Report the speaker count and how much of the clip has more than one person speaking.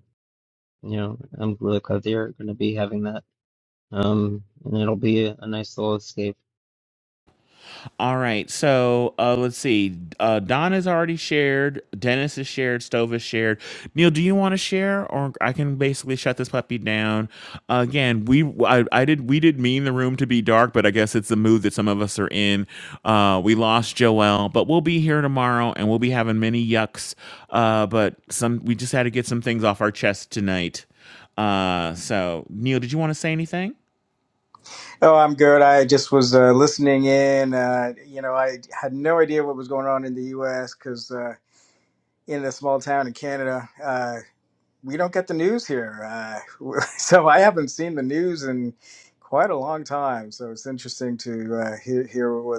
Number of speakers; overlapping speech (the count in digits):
3, no overlap